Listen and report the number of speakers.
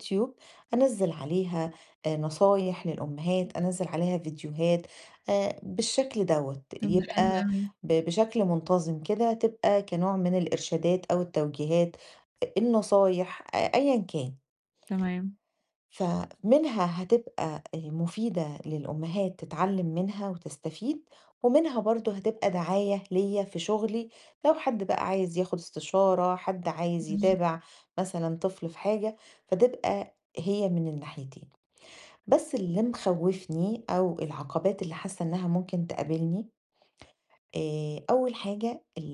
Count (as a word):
two